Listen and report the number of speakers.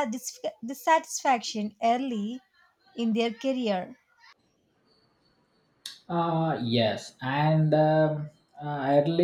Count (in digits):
2